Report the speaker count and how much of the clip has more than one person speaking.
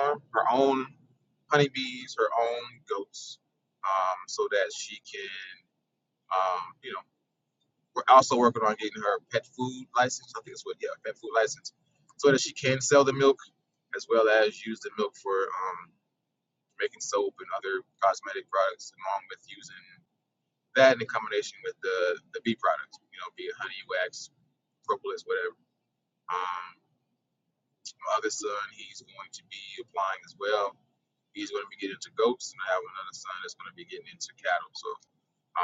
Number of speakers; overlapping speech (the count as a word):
one, no overlap